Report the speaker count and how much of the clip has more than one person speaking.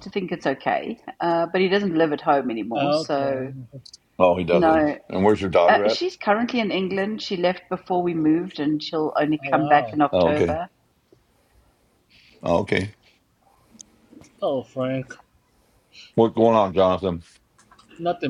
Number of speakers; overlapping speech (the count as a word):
three, about 13%